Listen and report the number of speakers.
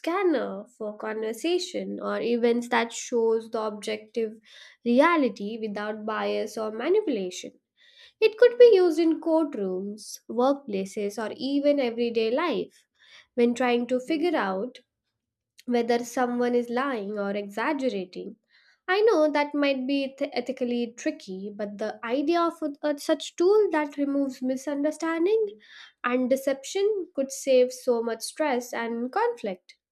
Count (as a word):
one